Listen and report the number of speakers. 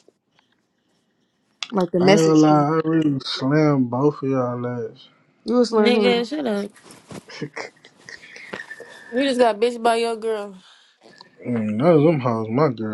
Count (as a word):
three